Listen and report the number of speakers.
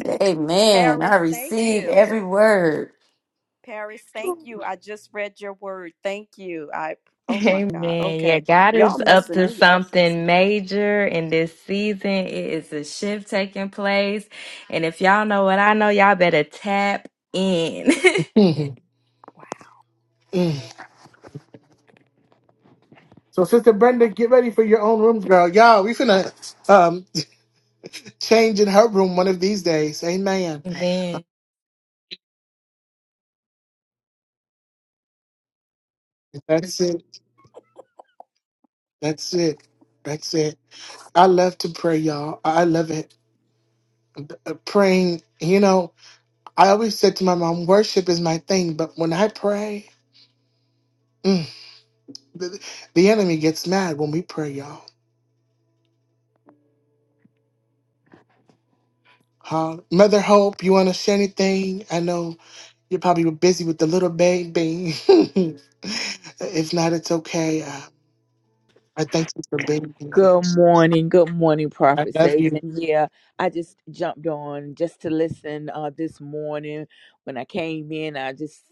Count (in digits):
5